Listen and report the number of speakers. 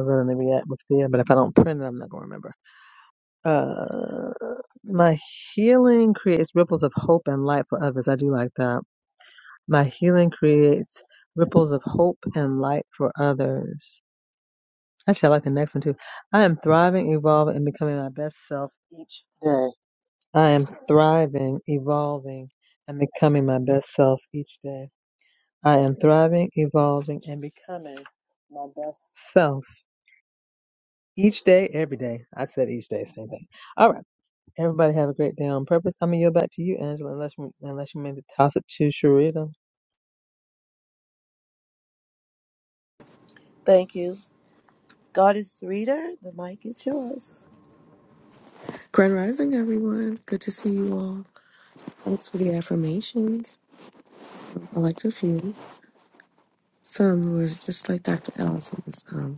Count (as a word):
three